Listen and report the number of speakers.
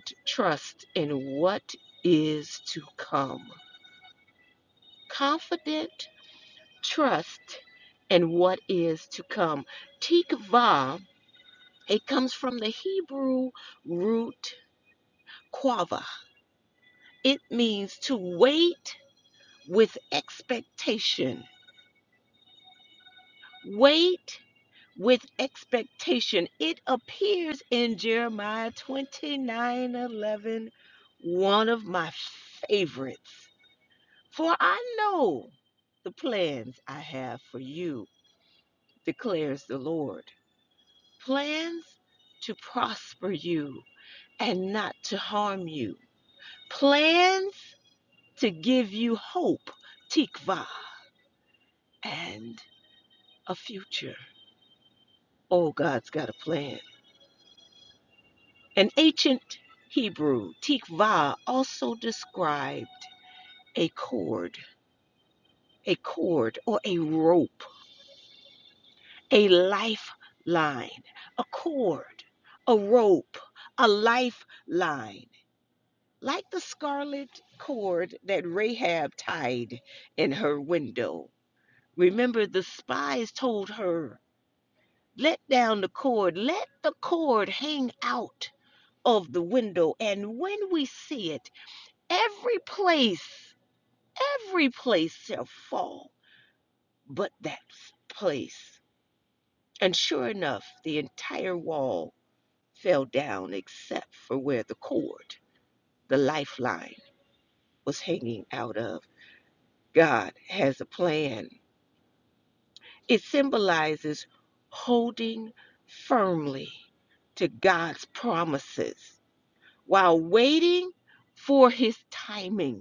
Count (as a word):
one